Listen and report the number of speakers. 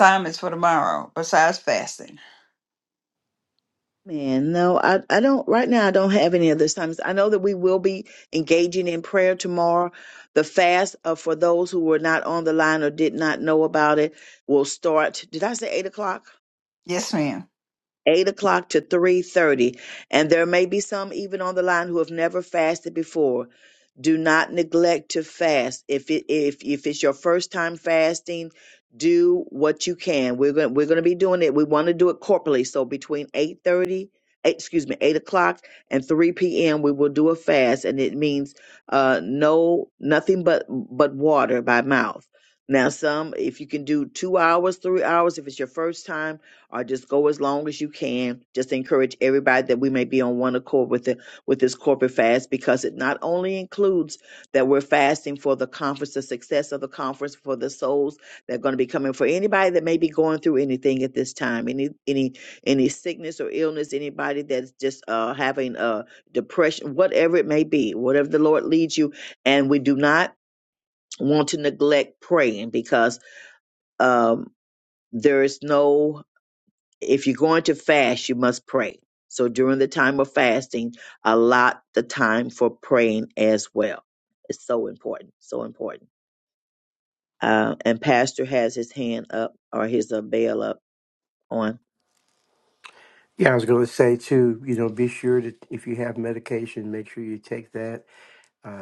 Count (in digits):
3